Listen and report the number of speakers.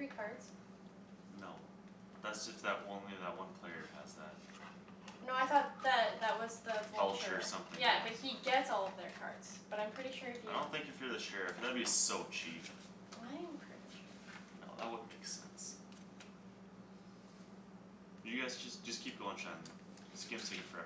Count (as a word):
two